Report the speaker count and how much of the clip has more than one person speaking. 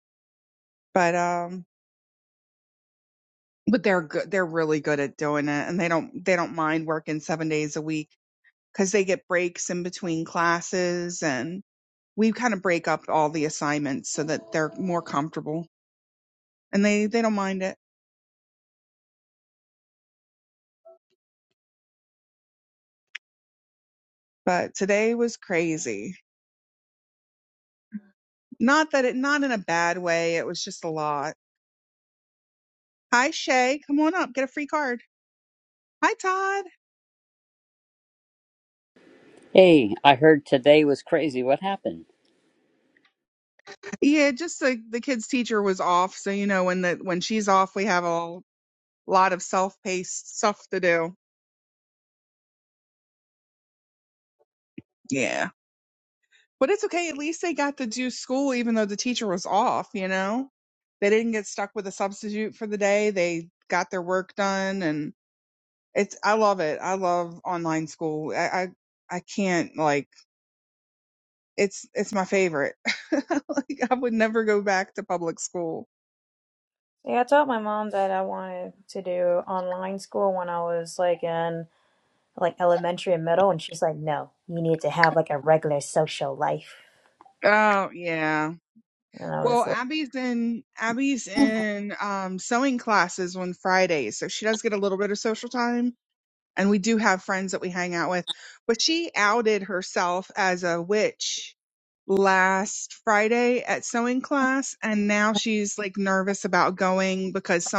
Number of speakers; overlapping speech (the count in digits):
3, about 1%